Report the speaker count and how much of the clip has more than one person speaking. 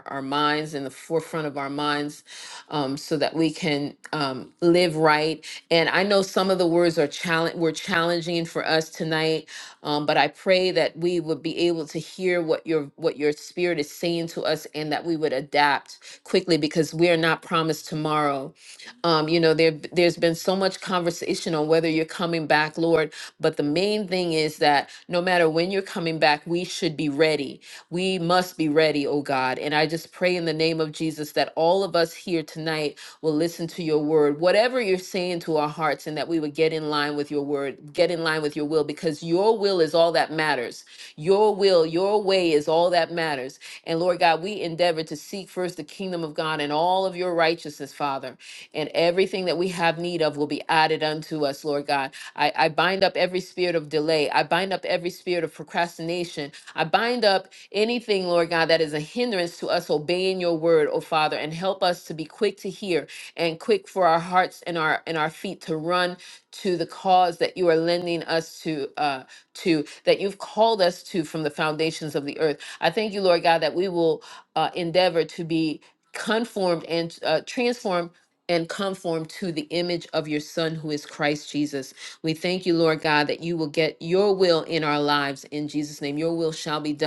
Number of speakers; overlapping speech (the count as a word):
one, no overlap